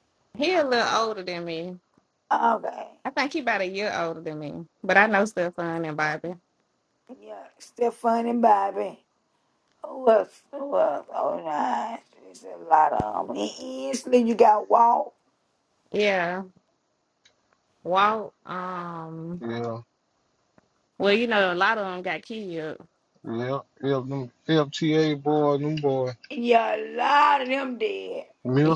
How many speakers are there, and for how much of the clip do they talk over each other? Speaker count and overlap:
3, under 1%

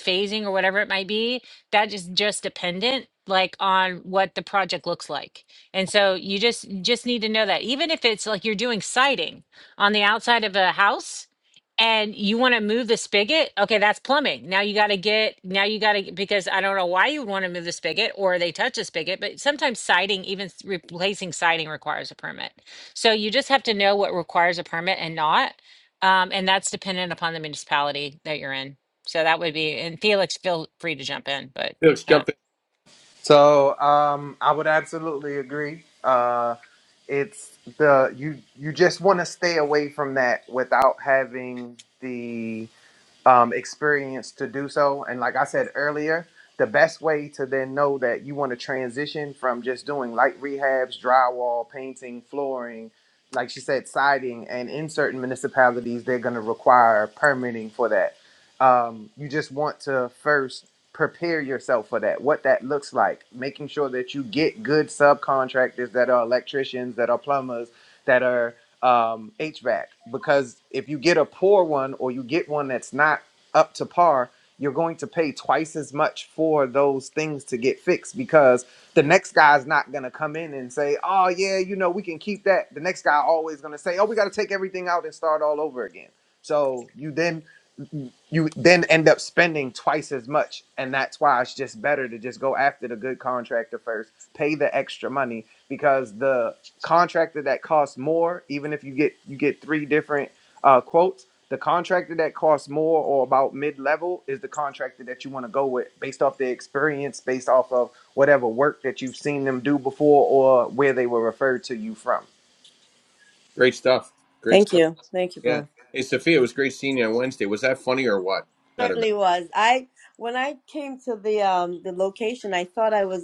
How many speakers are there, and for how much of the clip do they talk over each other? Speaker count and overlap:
4, about 1%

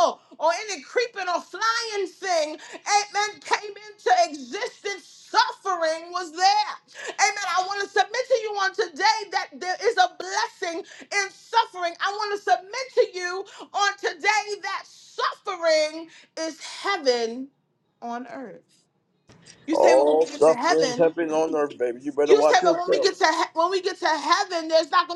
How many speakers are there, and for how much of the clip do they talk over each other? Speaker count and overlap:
2, about 9%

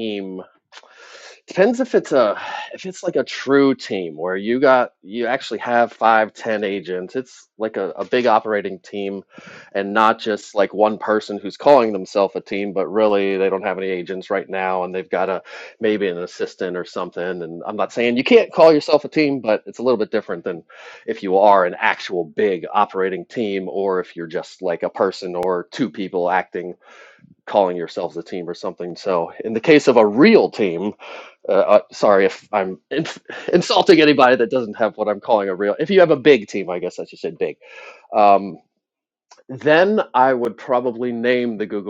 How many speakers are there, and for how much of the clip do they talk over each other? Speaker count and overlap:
1, no overlap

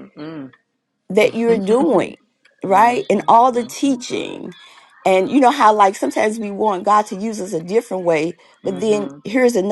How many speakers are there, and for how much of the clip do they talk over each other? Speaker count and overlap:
2, about 18%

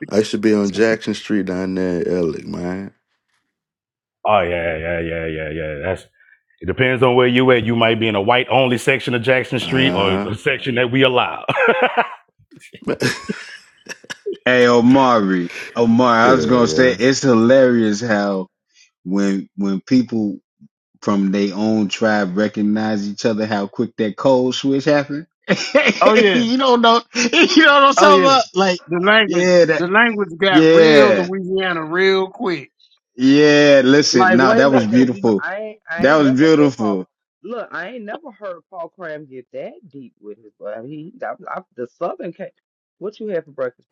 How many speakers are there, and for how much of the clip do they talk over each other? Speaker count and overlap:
5, about 13%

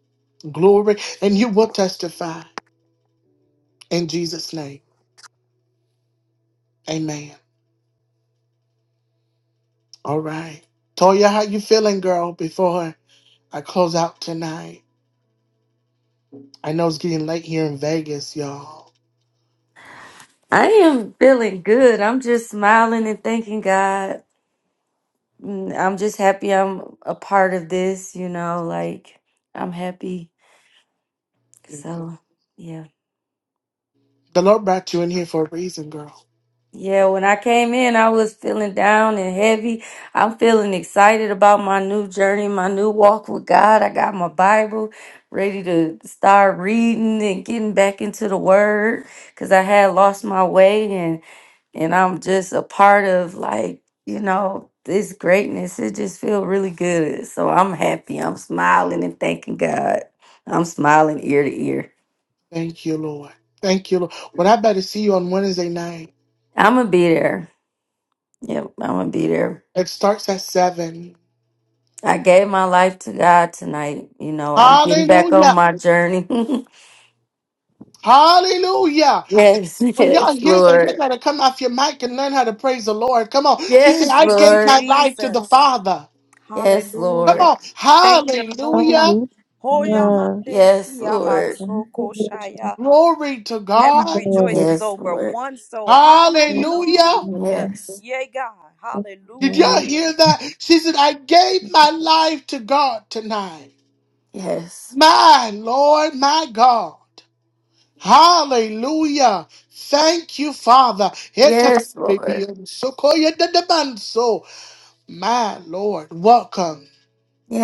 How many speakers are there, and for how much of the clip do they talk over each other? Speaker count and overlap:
4, about 10%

